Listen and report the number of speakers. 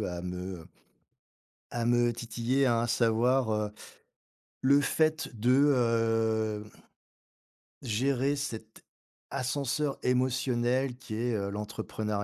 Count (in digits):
1